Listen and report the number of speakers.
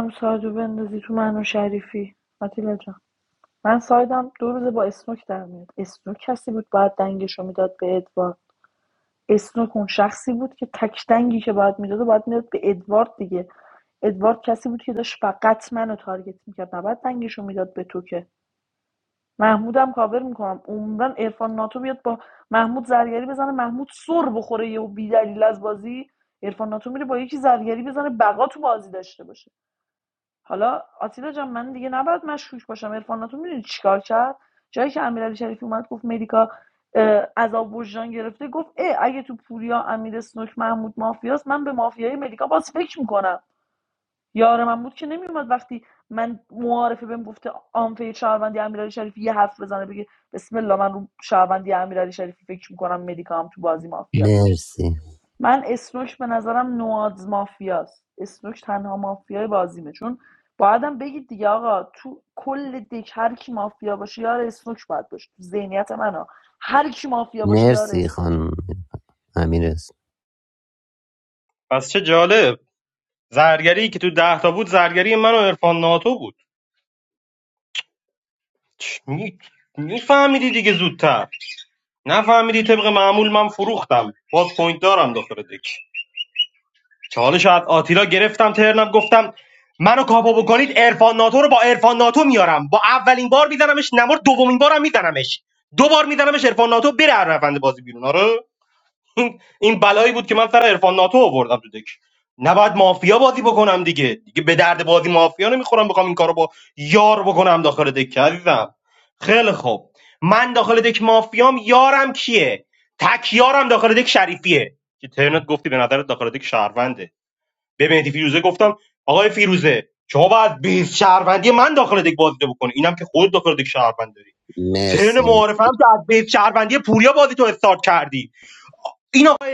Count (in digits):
3